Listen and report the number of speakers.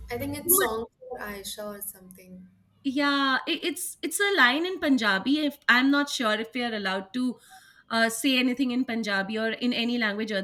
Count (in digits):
2